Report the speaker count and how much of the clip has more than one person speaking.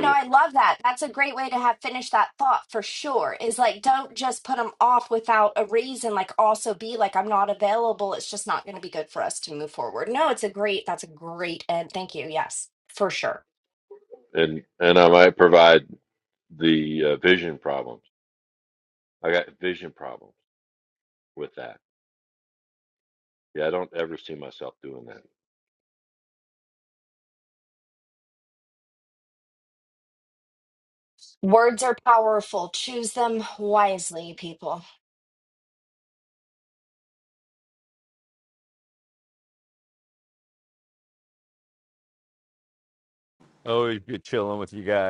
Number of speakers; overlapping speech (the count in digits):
3, under 1%